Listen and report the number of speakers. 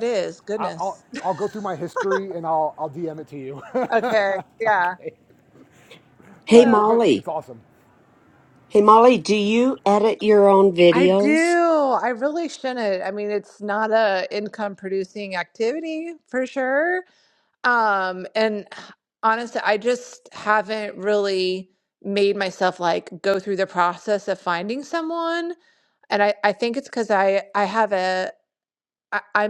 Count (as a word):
three